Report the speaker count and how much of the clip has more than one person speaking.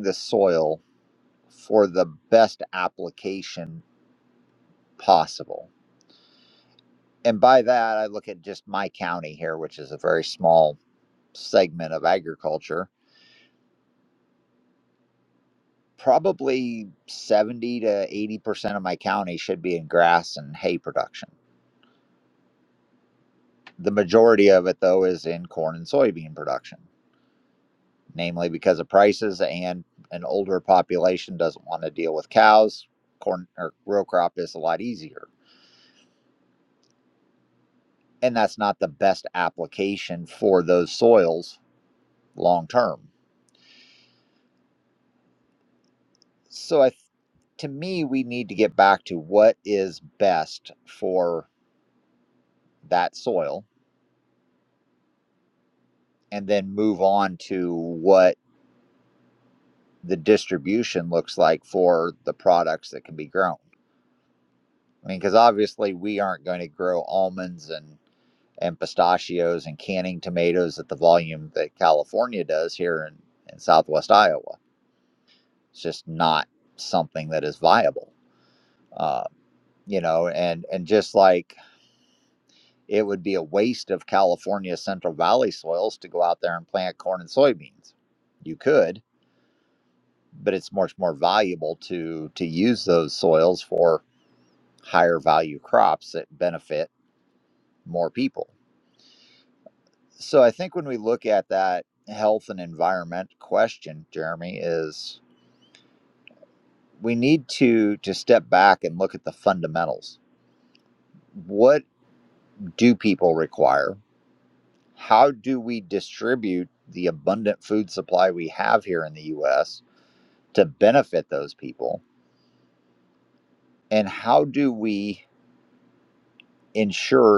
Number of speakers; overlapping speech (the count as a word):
one, no overlap